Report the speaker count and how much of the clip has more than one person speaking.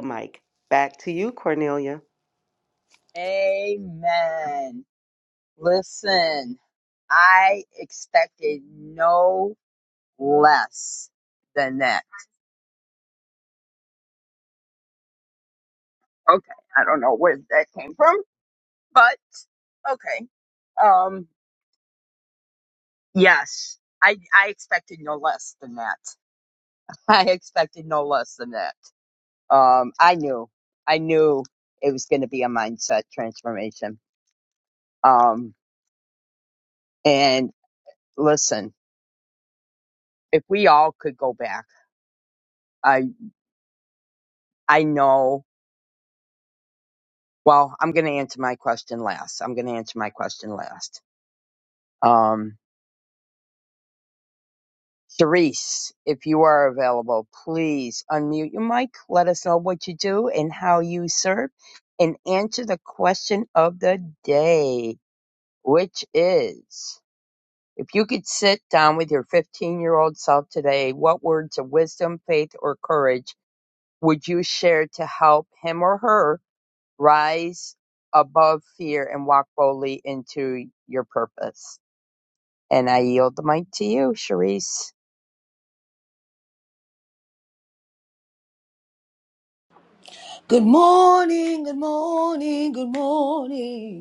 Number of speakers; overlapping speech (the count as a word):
three, no overlap